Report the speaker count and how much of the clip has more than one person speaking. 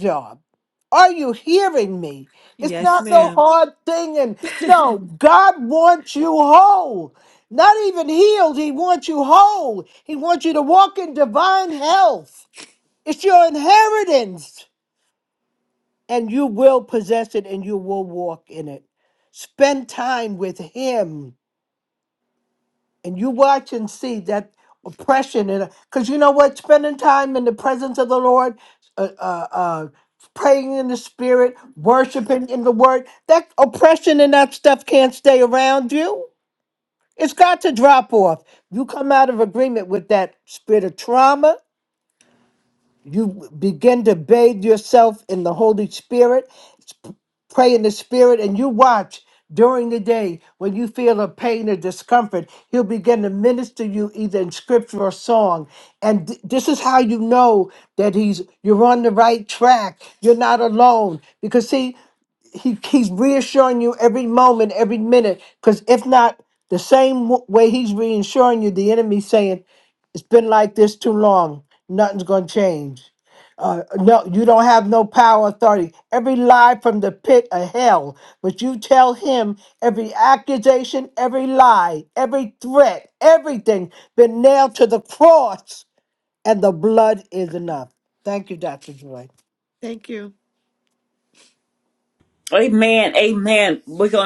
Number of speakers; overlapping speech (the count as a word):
three, about 1%